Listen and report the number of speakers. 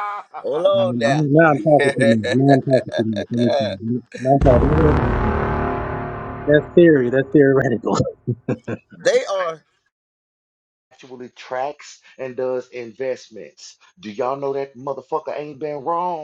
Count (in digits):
3